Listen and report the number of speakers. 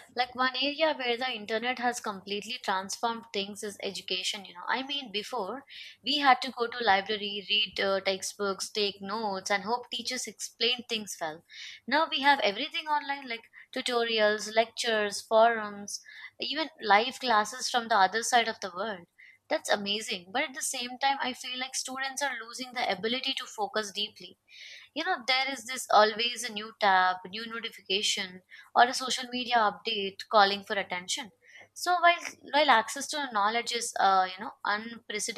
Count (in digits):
1